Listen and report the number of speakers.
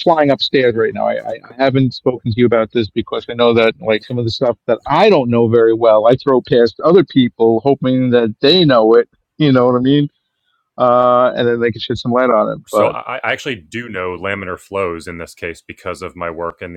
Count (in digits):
2